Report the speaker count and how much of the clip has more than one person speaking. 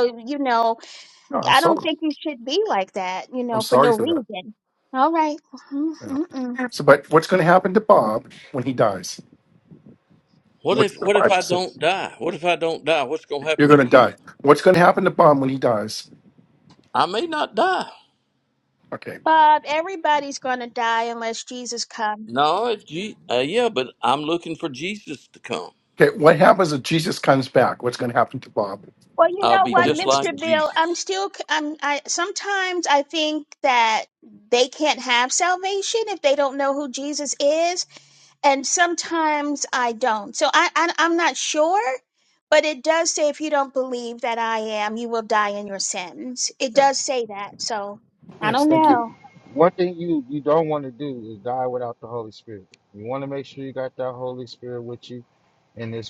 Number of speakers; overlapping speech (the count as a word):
four, about 8%